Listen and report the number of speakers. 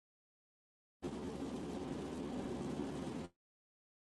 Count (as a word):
zero